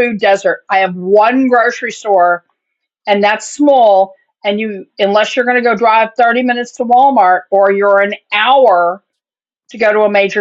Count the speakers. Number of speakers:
1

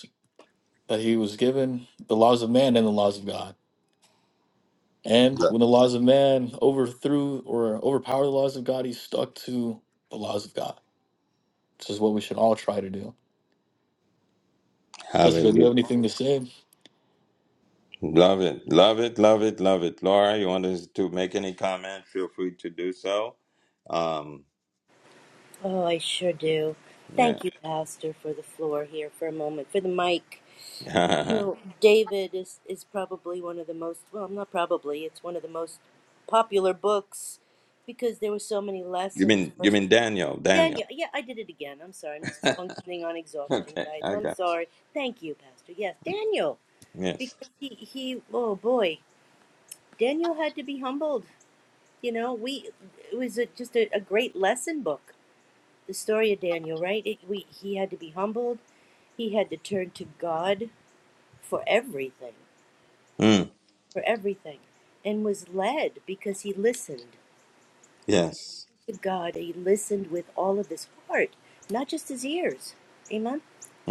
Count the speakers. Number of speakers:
3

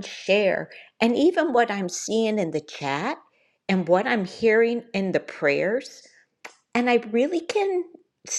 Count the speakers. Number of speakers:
1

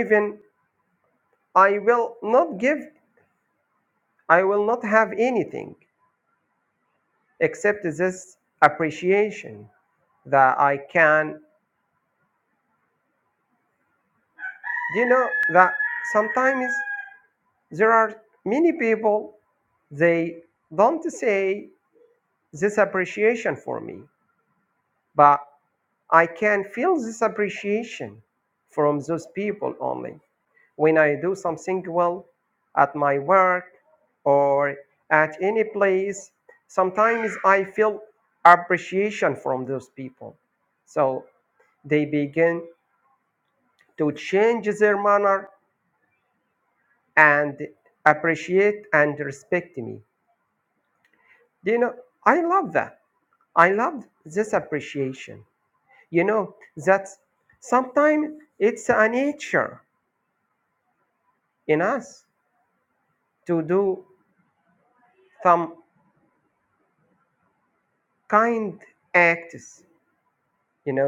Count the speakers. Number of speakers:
1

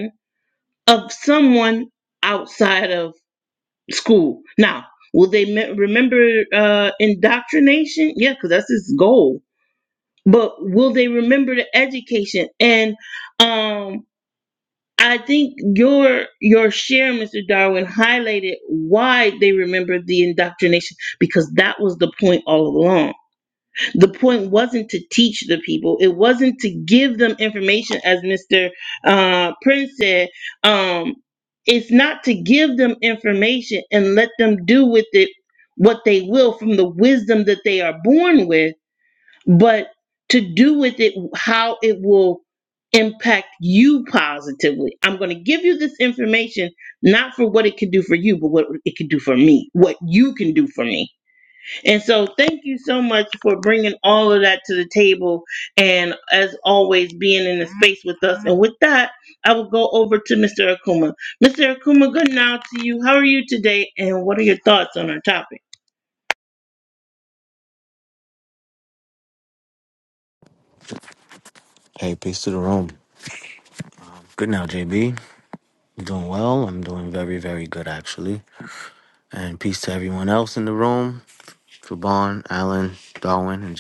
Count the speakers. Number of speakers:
2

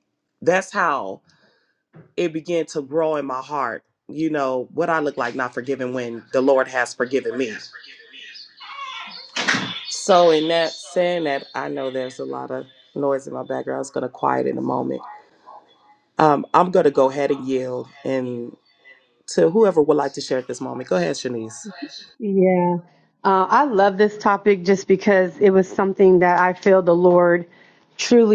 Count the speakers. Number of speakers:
2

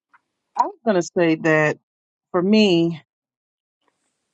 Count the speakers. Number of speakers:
1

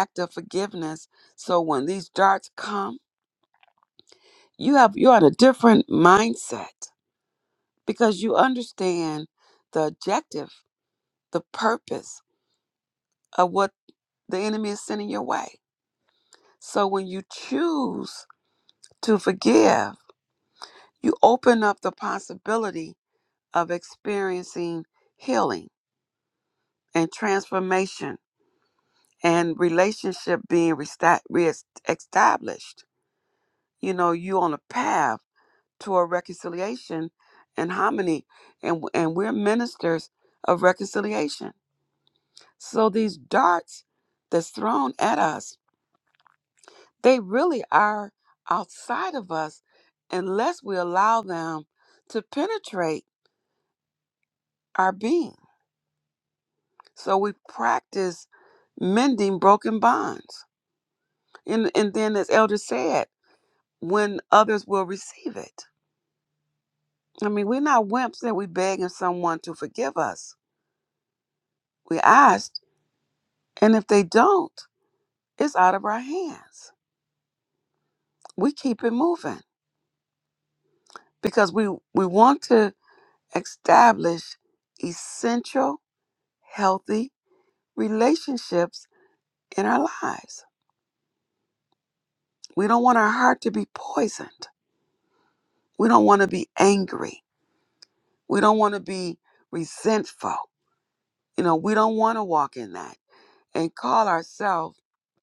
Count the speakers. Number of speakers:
1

